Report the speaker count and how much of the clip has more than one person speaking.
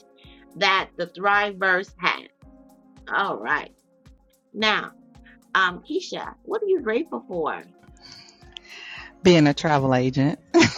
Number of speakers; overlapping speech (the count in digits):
2, no overlap